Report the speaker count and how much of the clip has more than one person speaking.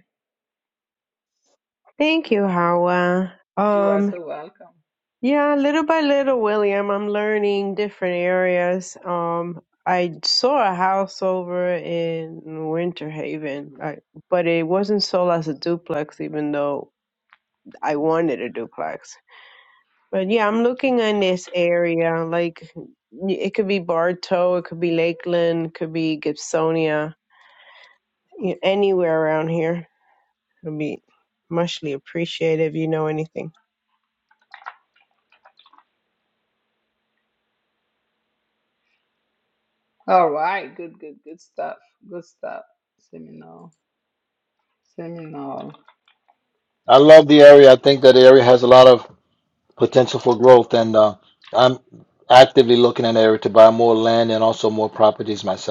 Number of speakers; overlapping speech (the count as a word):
three, about 1%